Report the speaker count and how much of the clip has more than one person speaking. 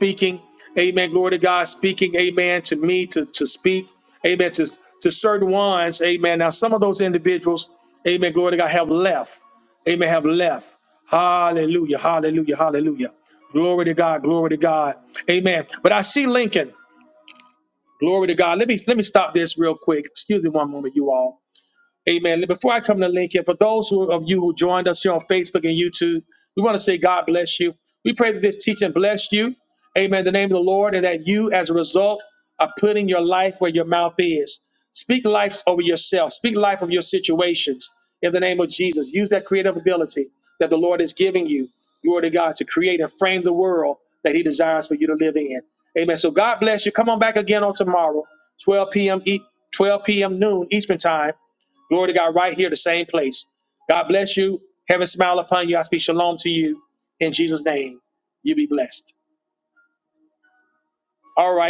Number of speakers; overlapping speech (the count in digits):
1, no overlap